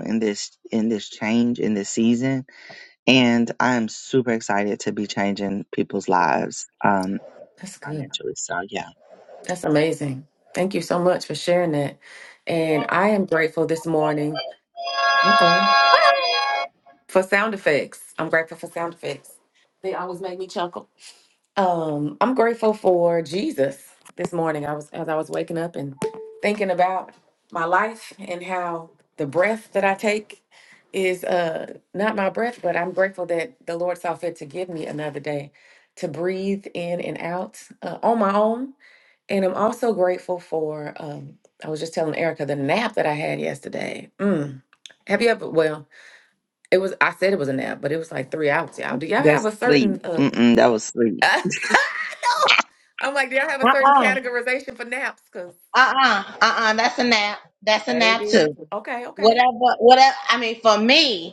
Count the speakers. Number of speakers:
three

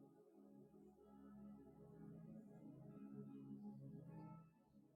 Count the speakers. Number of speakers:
zero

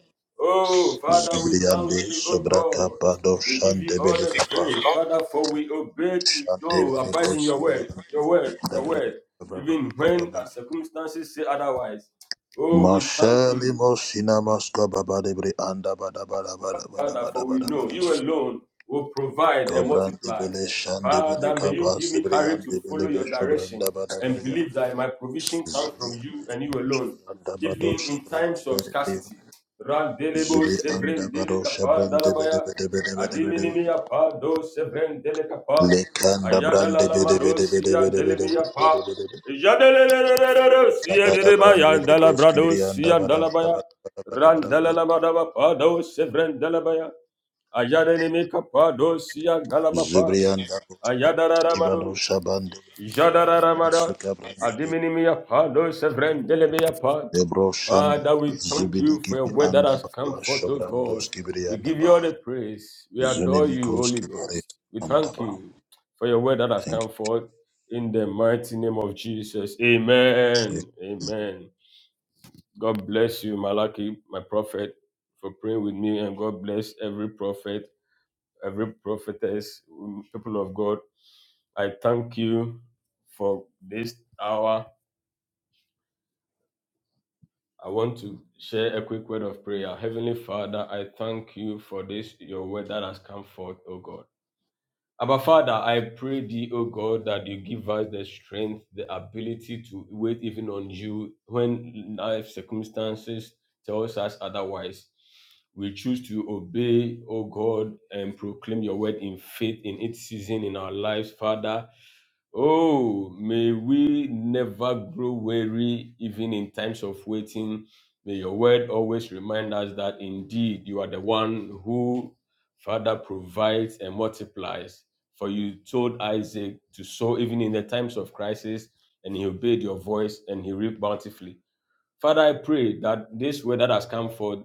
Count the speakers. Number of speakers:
two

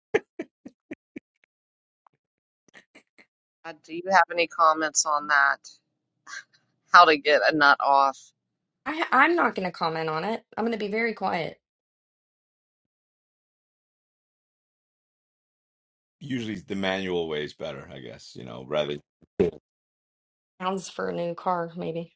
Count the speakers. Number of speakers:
three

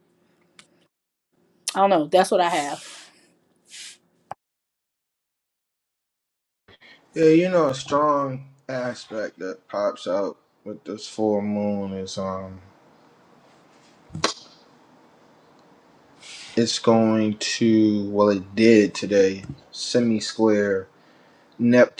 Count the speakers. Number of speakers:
two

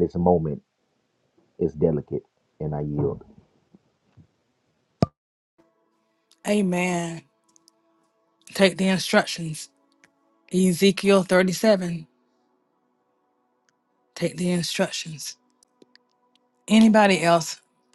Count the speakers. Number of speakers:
two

